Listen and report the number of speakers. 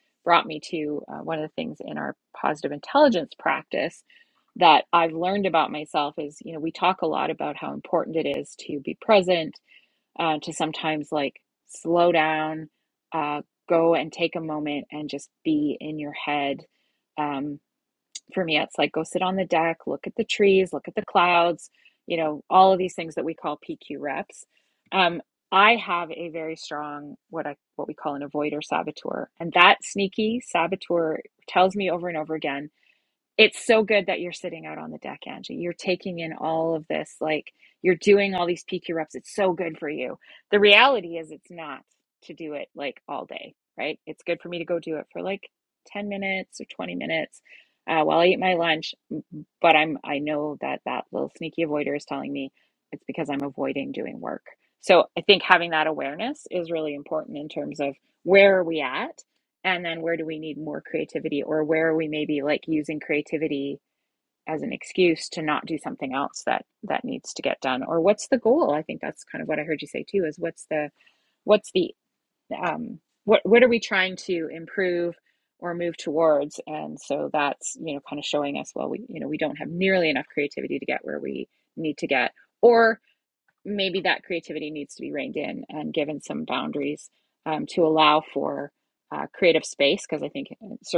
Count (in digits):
1